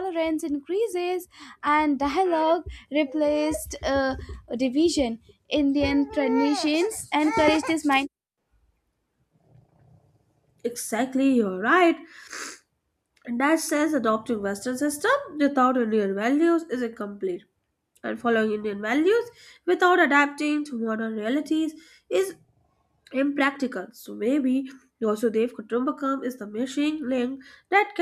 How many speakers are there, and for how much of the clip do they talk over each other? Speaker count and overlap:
two, no overlap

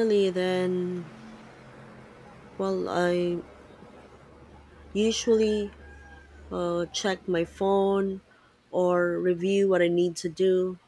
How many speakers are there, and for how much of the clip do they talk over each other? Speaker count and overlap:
one, no overlap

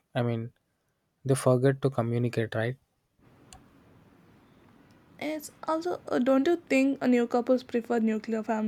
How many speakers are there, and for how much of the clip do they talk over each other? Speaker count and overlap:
two, no overlap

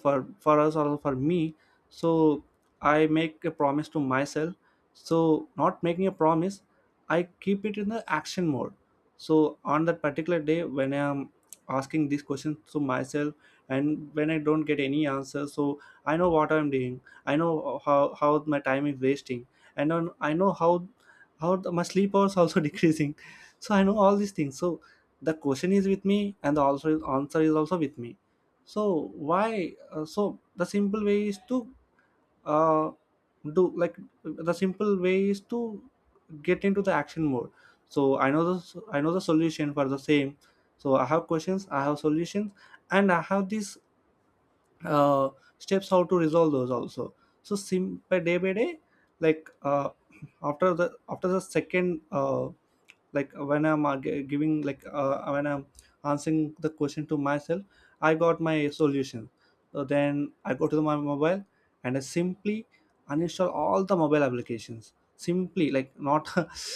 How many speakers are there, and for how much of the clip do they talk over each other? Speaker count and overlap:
one, no overlap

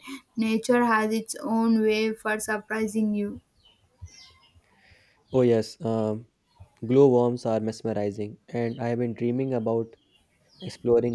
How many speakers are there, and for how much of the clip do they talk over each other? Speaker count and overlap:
two, no overlap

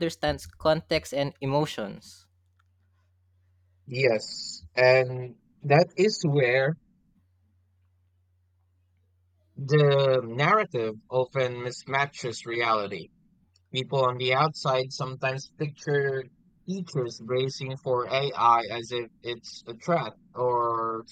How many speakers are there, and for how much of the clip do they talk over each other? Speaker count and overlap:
two, no overlap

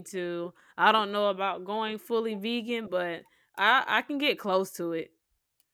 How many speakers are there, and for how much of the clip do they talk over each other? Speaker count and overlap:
one, no overlap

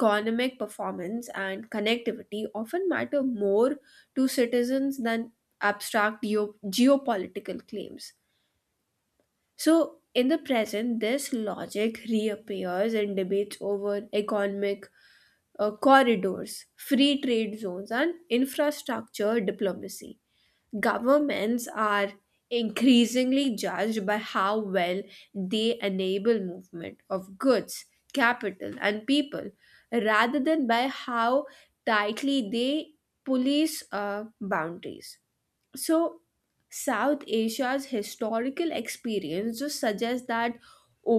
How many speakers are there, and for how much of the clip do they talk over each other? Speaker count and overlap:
one, no overlap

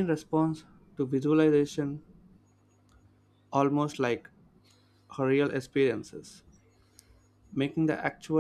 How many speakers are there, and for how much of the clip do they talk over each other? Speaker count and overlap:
one, no overlap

